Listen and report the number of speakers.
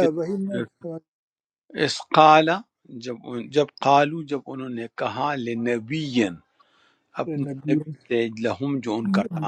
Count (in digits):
2